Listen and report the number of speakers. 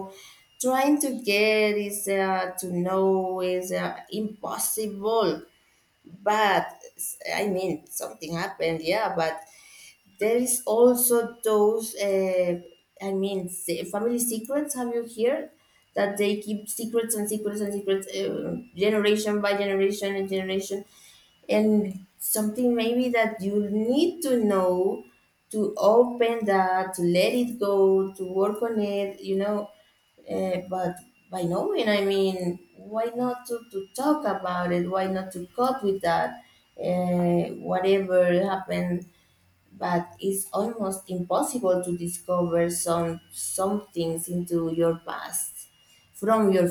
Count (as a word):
one